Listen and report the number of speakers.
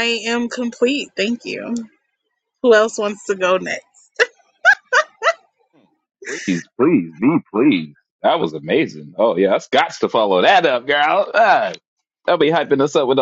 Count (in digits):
2